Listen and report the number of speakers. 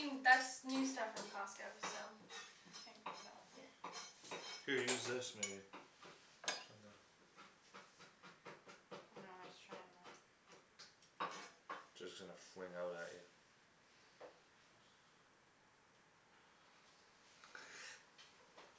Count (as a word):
three